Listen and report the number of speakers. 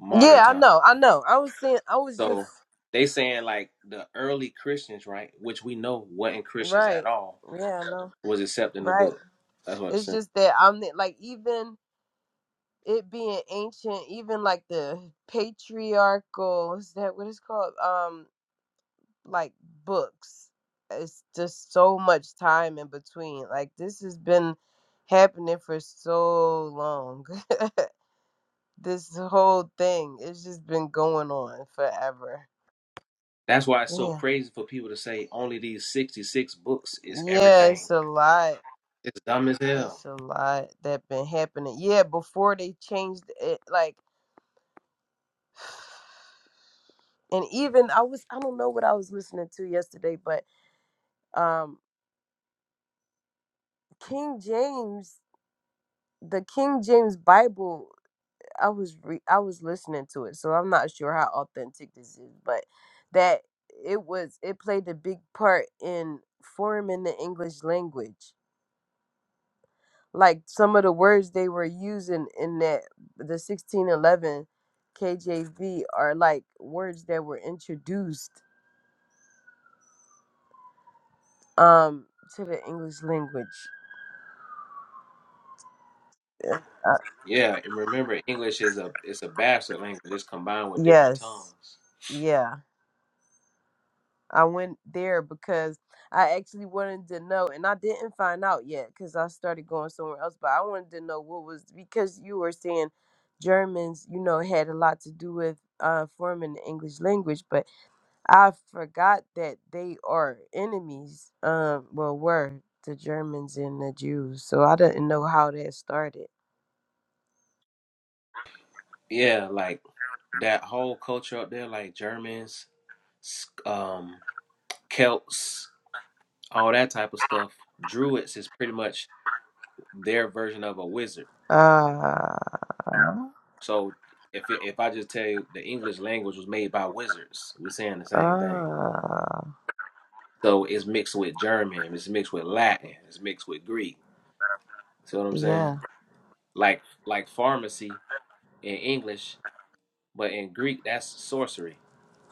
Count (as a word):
two